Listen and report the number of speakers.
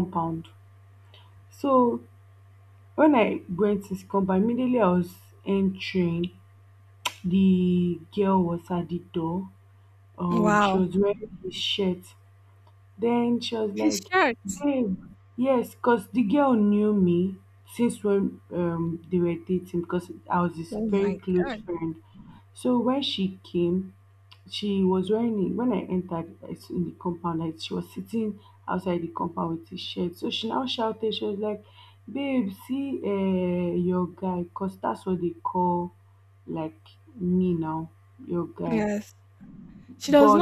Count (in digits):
2